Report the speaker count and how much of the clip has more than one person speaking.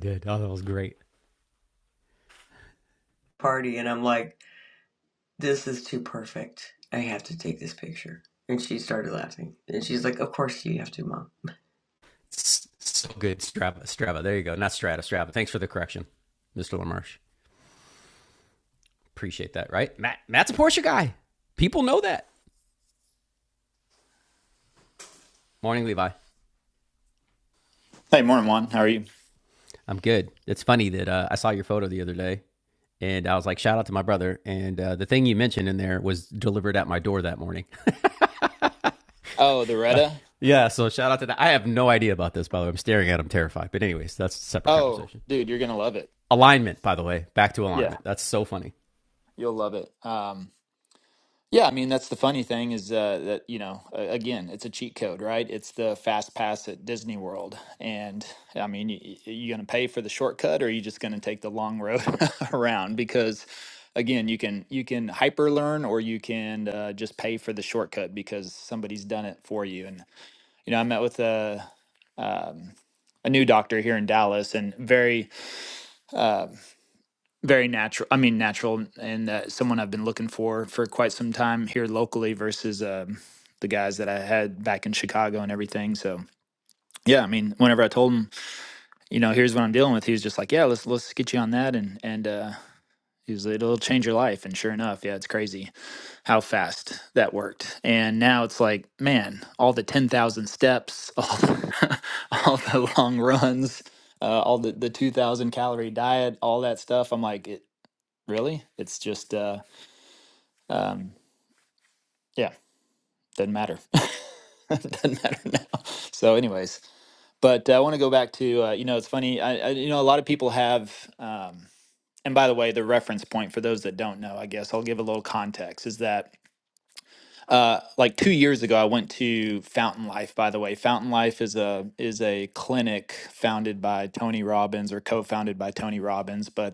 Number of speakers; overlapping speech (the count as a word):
three, under 1%